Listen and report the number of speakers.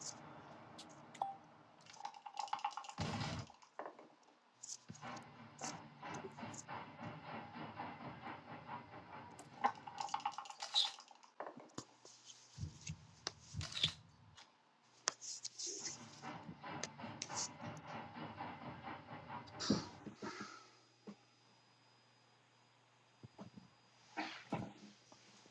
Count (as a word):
zero